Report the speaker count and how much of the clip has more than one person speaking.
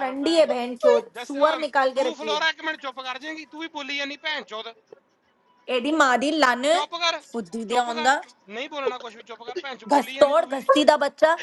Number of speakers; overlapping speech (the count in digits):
2, about 28%